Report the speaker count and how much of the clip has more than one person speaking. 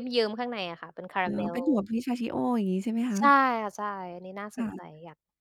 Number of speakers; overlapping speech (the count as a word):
two, about 13%